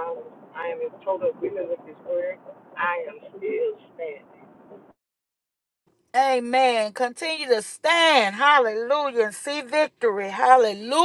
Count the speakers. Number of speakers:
2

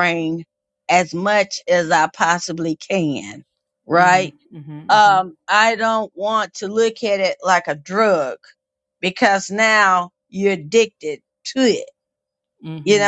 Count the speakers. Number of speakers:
2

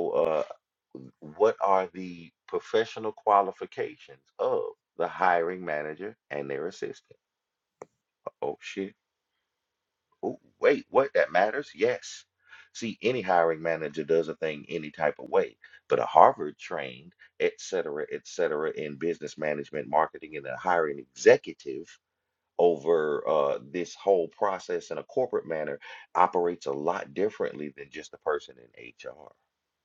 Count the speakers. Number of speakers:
1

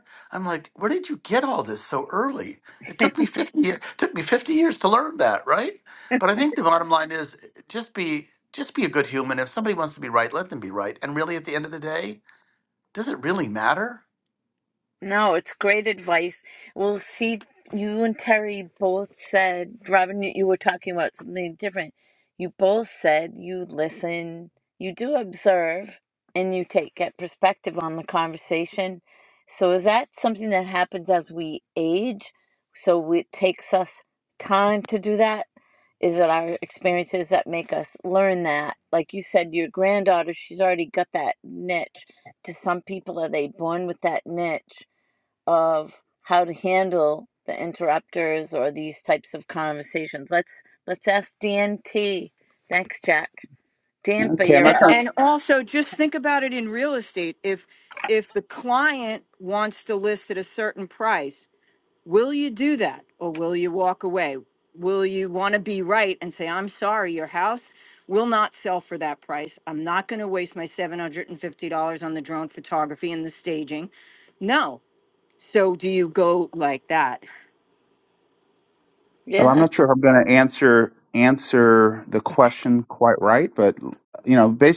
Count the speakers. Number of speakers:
4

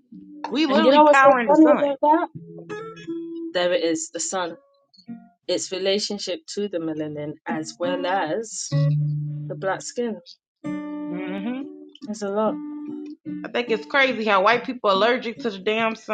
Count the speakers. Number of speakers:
2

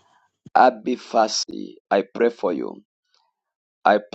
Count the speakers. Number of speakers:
1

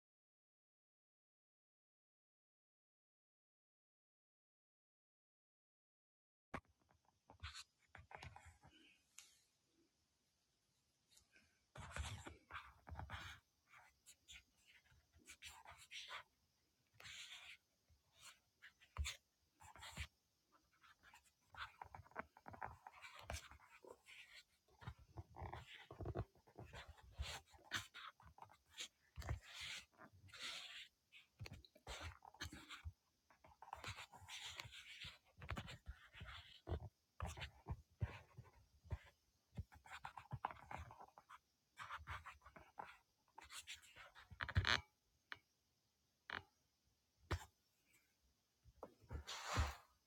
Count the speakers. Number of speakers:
0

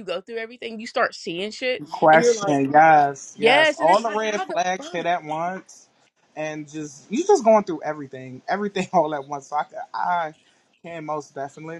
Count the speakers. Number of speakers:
2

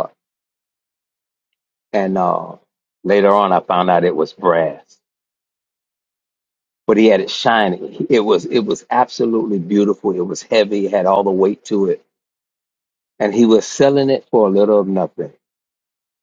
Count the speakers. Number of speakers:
1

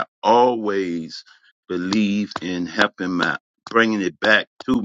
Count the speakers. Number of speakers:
1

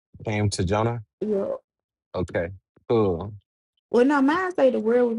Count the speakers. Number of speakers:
2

